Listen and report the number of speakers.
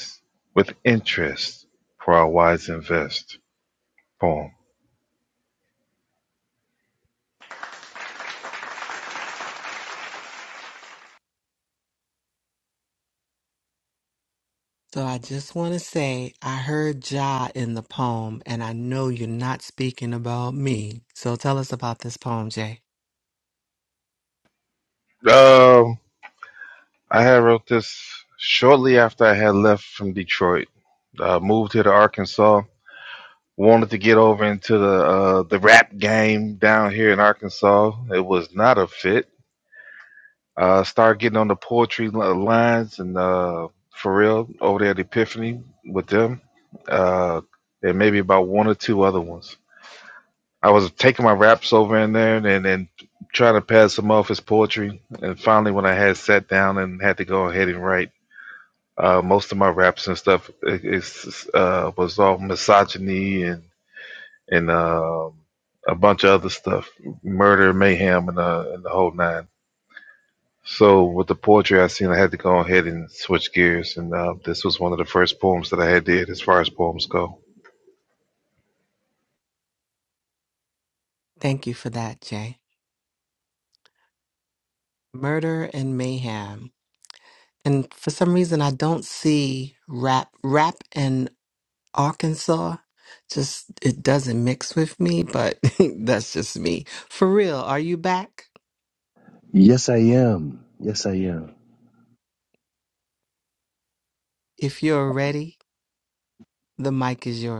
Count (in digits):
3